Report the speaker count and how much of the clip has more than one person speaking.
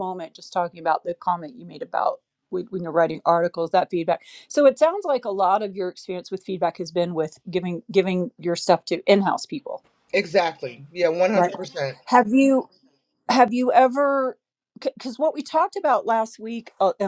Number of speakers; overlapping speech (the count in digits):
2, about 2%